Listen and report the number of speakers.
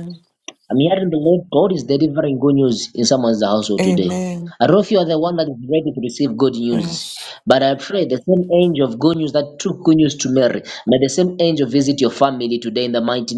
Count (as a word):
two